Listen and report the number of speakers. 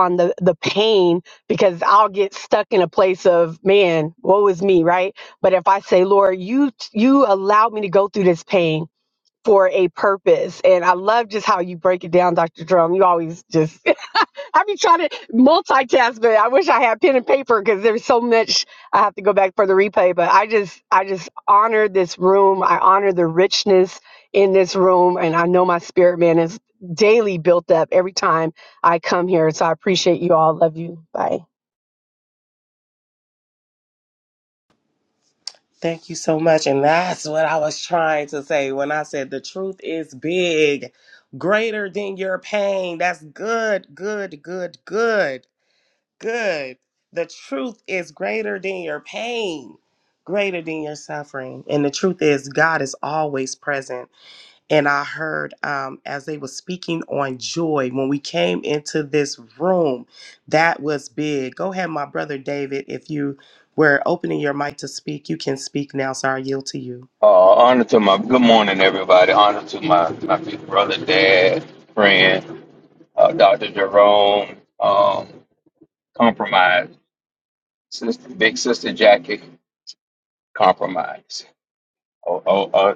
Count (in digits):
3